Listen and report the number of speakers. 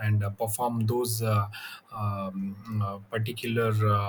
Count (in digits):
1